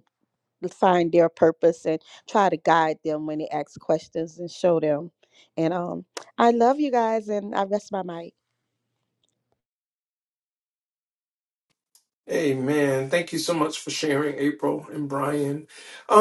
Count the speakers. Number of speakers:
2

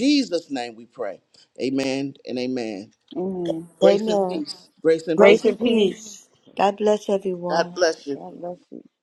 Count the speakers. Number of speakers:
3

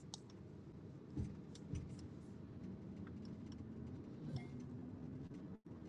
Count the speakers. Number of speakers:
0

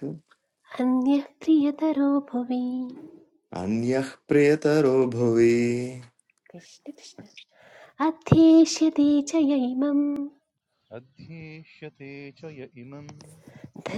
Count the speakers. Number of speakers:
3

